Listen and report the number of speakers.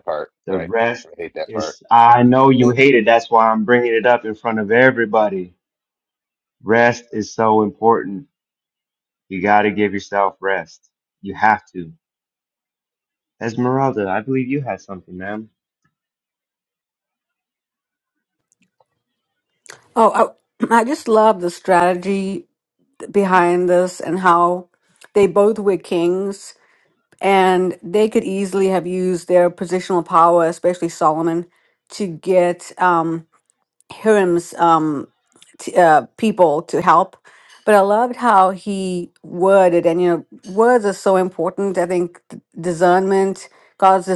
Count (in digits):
3